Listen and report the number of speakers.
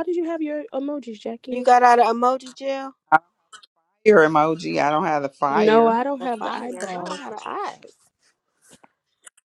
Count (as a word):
three